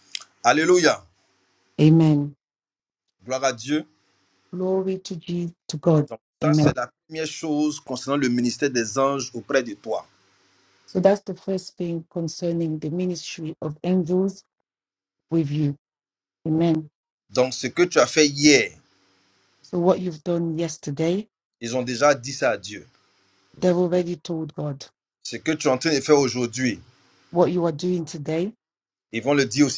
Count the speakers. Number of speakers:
2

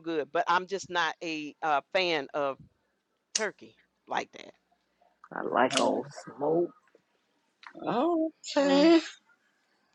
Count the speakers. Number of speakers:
3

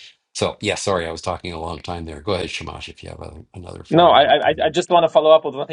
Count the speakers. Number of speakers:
2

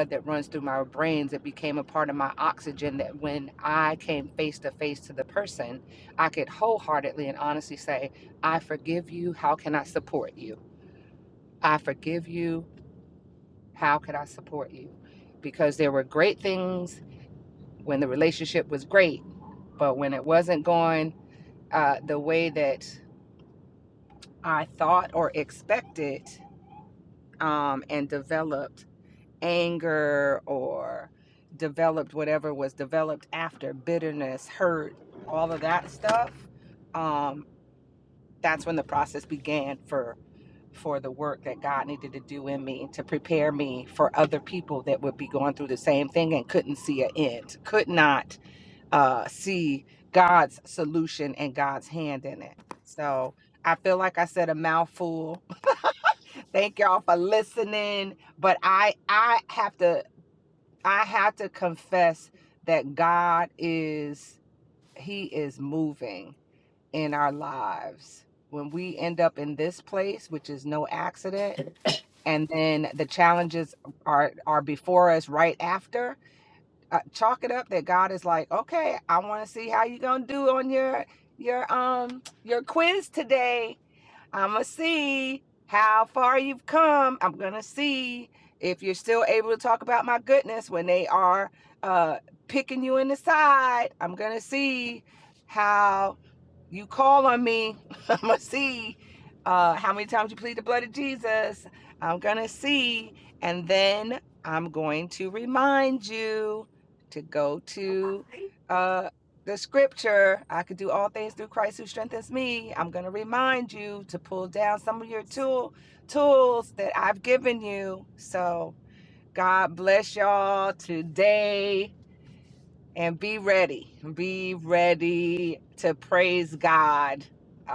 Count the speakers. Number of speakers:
1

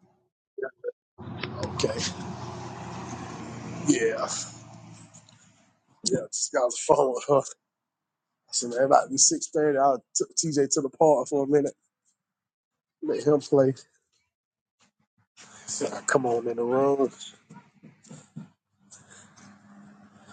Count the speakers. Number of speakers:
1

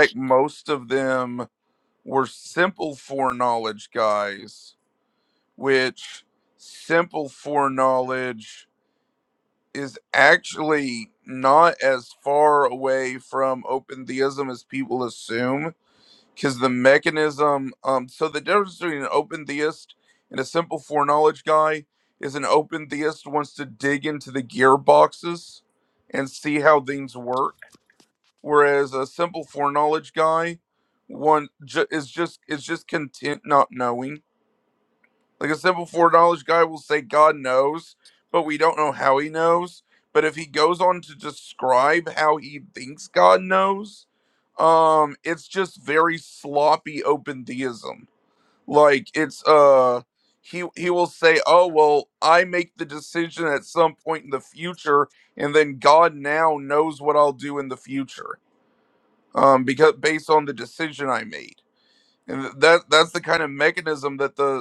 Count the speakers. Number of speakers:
1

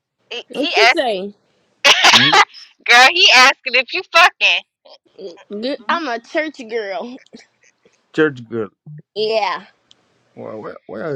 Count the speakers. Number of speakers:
3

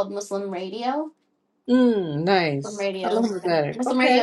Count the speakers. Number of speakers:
2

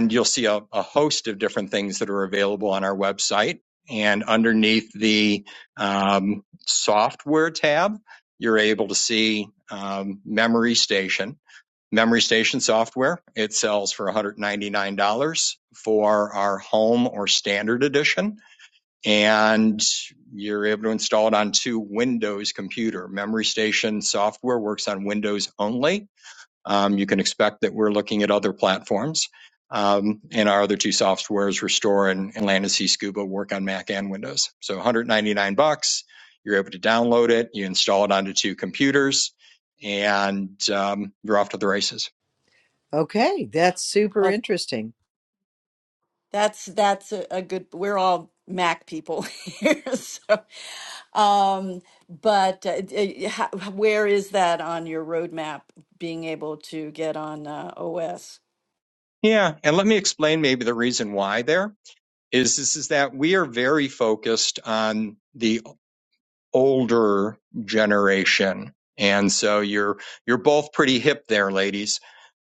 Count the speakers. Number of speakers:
3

